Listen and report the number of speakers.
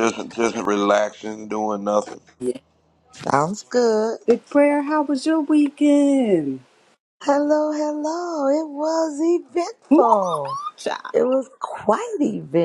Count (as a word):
three